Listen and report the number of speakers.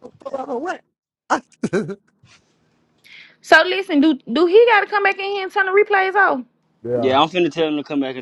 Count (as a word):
three